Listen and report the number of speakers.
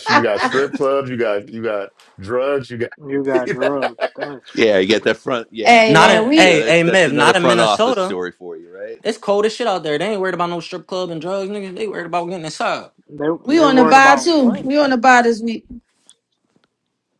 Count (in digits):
5